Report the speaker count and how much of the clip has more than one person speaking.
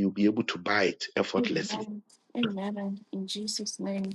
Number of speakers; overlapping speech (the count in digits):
2, about 12%